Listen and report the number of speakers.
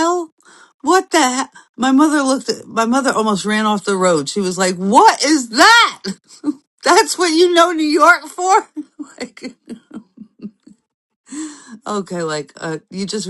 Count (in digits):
1